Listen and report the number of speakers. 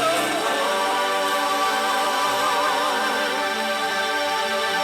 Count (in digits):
0